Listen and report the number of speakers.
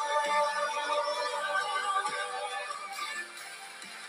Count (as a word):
zero